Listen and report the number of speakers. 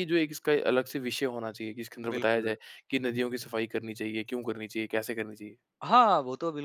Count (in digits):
2